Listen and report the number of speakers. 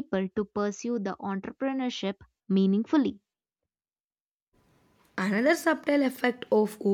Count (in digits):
2